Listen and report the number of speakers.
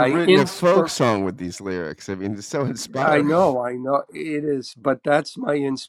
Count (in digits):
2